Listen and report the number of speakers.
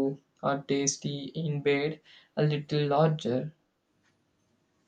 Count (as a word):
one